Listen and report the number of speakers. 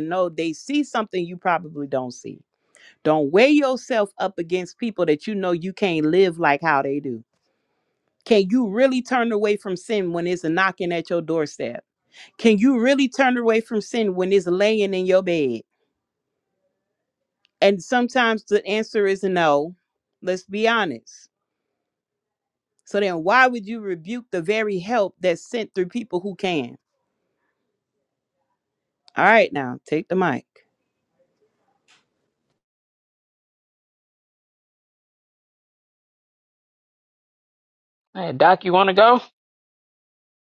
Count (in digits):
2